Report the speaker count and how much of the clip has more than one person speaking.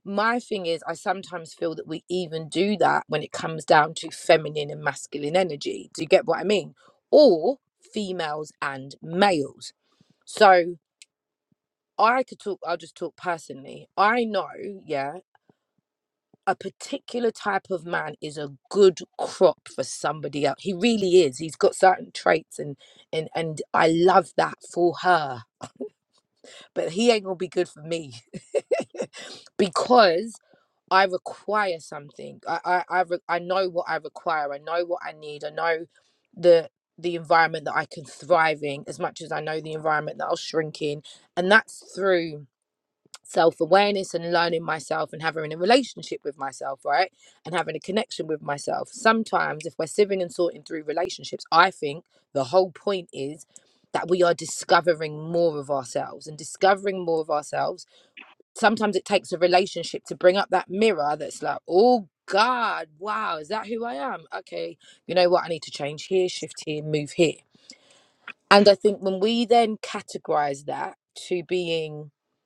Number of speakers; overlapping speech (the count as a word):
one, no overlap